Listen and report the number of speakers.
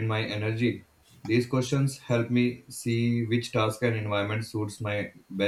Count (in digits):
1